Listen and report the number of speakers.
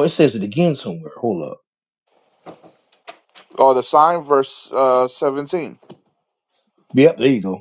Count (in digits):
2